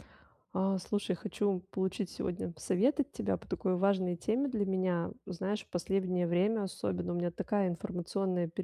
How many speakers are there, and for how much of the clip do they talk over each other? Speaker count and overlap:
one, no overlap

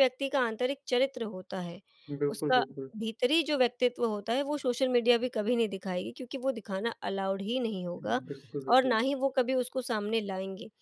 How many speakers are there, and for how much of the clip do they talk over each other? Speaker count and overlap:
two, about 10%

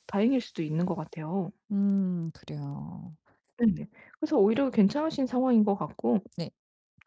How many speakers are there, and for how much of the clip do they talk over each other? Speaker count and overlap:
two, no overlap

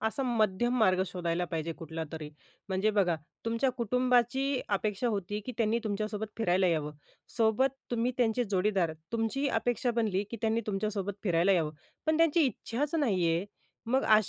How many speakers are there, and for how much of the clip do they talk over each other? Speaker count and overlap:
one, no overlap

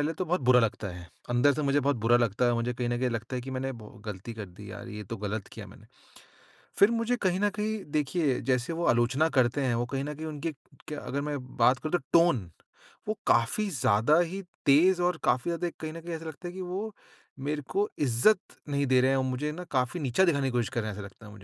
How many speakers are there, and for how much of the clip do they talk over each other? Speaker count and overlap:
one, no overlap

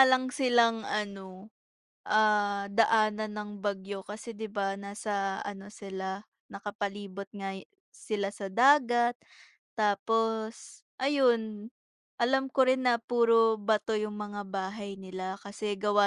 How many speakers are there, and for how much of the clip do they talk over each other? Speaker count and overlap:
one, no overlap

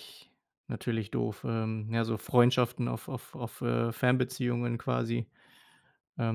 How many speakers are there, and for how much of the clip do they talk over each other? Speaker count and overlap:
one, no overlap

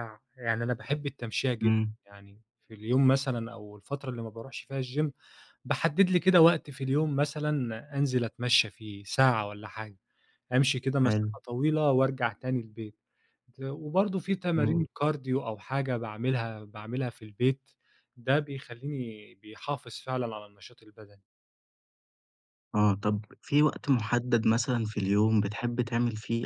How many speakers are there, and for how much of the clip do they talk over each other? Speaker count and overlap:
two, about 2%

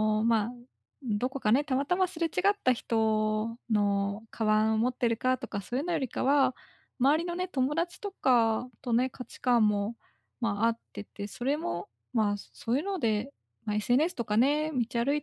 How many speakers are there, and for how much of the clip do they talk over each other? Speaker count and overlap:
one, no overlap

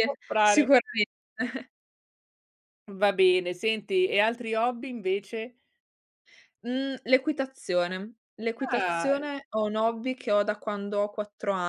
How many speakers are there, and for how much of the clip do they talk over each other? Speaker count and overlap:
two, about 8%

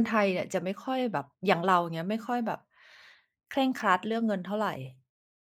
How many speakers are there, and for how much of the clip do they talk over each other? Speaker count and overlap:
one, no overlap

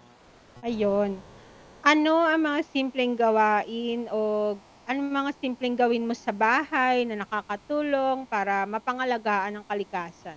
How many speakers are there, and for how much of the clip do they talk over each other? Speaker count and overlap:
one, no overlap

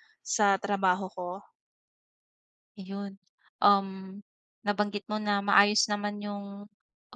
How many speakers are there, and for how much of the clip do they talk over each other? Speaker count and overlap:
two, no overlap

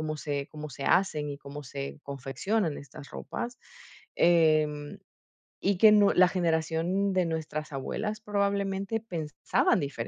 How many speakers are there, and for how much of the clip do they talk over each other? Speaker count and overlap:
one, no overlap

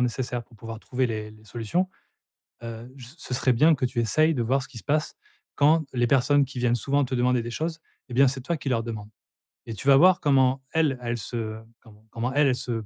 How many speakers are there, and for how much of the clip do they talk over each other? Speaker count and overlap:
one, no overlap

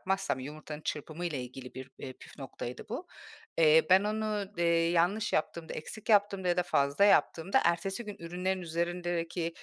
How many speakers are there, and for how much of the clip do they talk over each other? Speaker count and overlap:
one, no overlap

